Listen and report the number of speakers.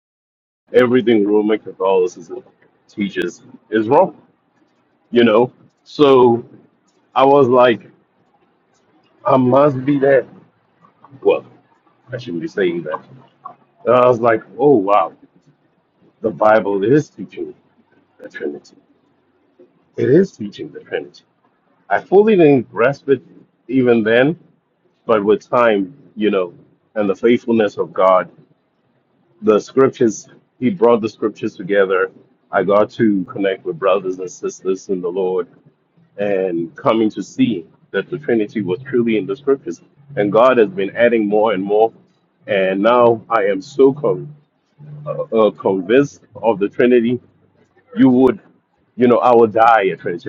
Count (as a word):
one